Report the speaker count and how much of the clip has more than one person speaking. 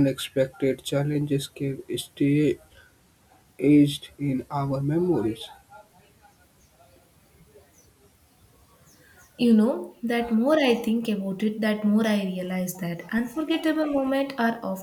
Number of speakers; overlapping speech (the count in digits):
2, no overlap